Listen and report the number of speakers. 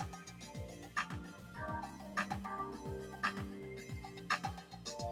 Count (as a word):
zero